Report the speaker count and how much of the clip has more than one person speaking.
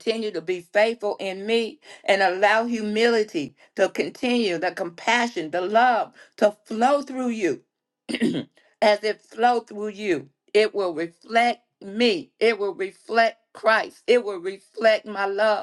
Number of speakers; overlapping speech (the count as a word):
one, no overlap